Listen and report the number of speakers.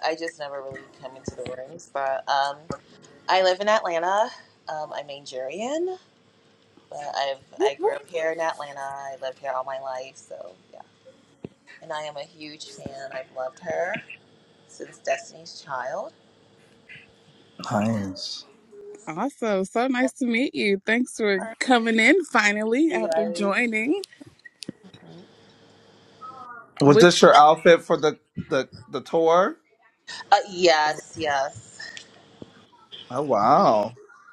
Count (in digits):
3